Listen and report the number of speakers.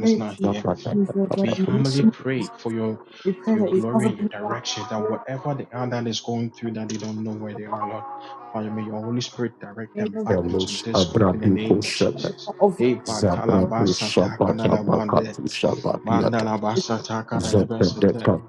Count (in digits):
3